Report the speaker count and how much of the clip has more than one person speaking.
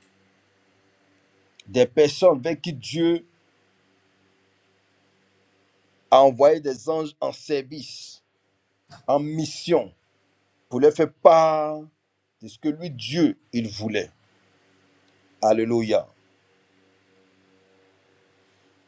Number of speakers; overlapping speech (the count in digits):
1, no overlap